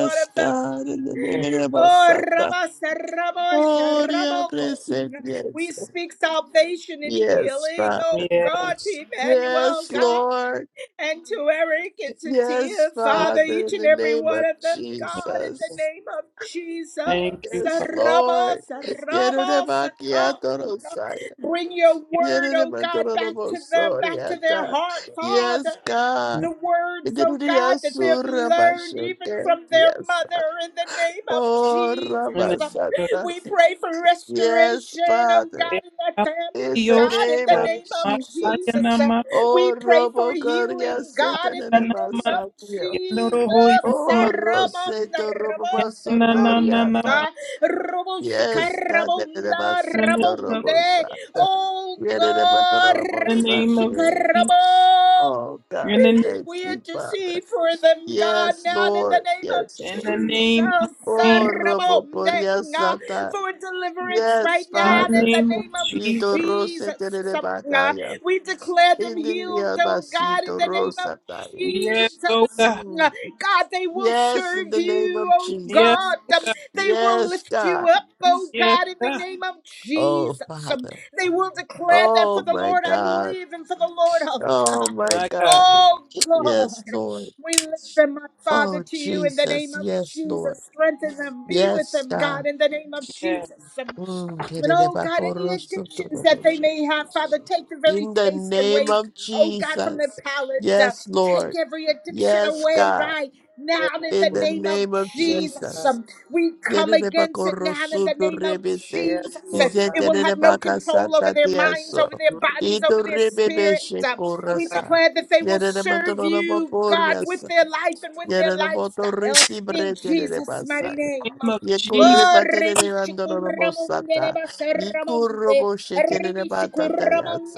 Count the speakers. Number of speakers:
3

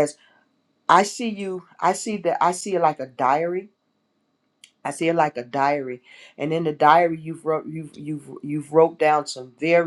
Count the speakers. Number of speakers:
1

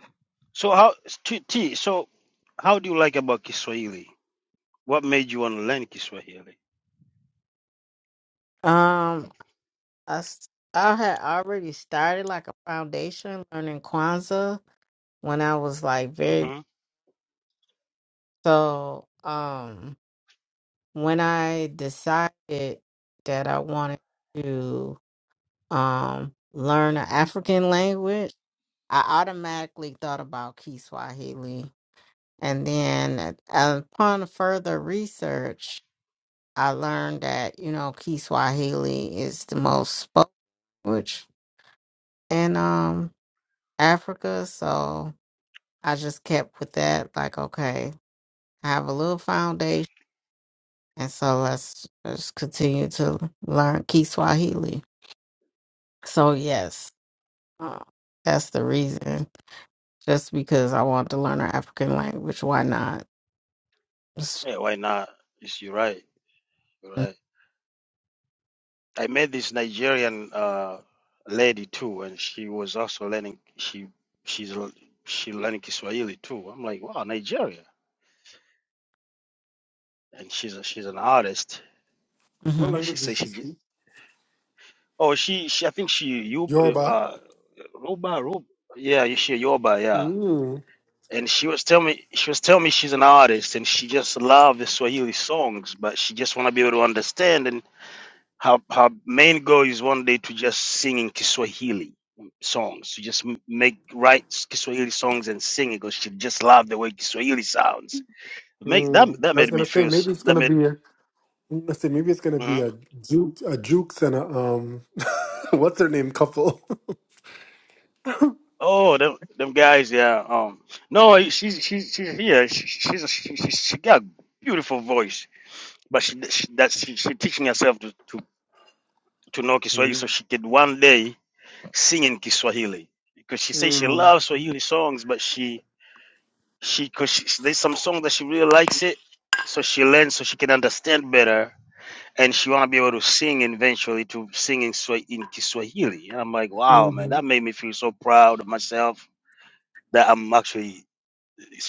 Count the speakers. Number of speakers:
3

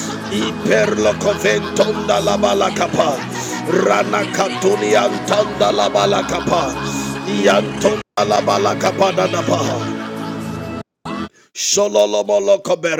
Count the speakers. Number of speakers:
1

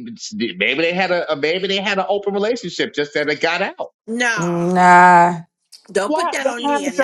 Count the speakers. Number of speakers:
3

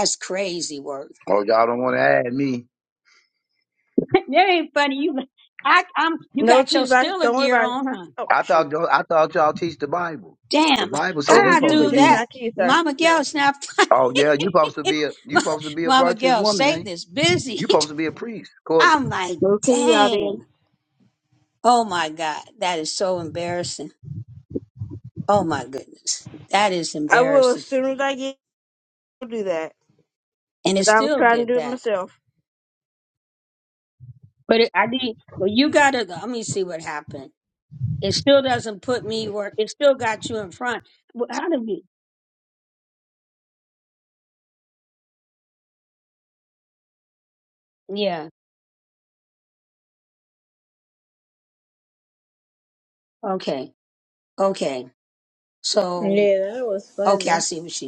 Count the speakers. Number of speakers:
4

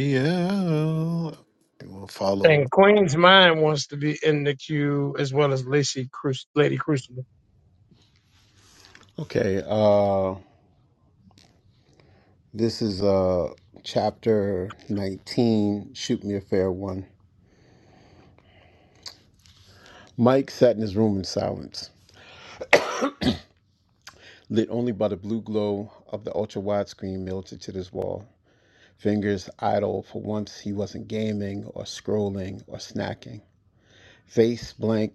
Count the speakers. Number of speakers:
3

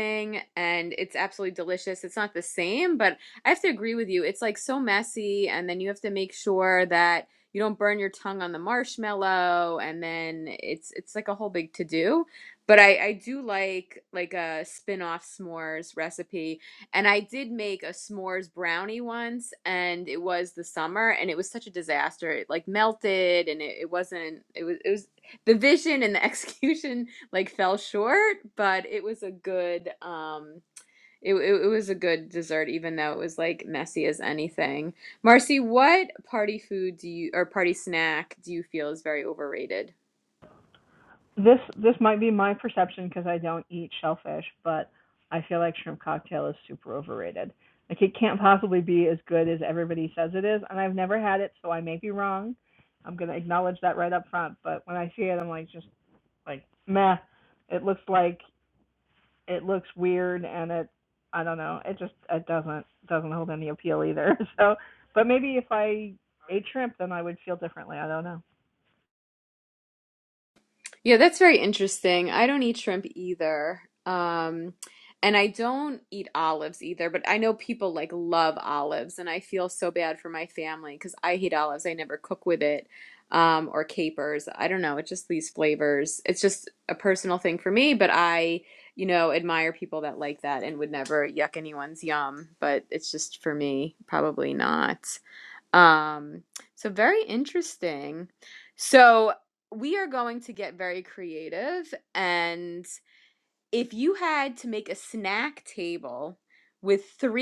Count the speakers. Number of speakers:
2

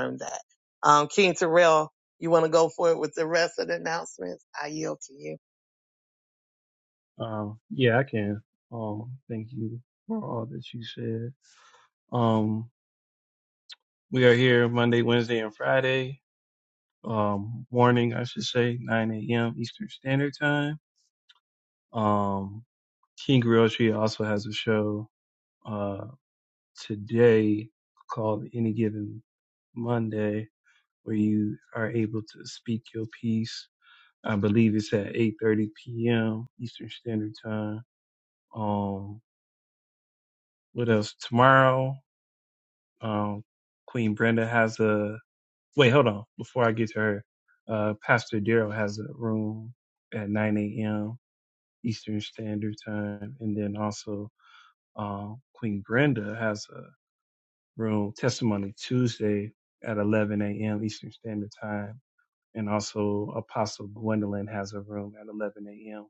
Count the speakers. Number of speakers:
2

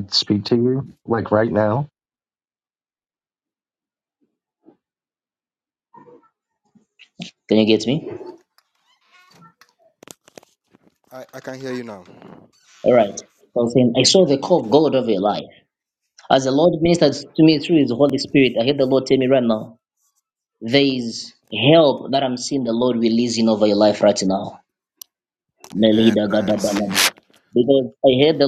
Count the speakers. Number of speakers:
3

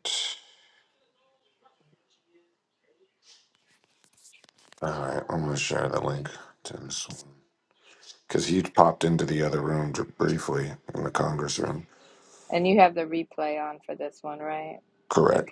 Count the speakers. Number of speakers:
2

